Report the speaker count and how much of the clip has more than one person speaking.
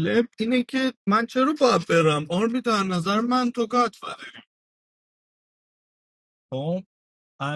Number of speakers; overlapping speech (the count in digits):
1, no overlap